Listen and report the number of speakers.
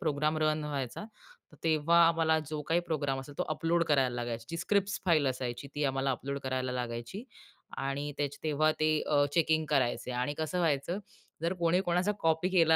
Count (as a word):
one